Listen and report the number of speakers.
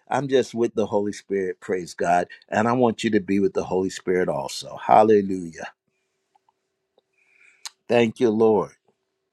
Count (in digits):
1